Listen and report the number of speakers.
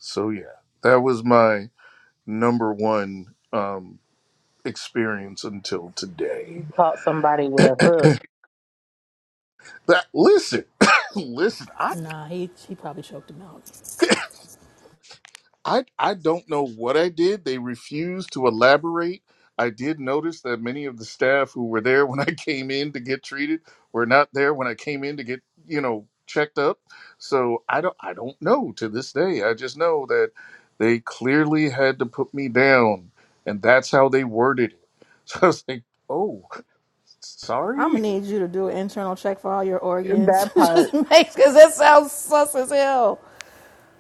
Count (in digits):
3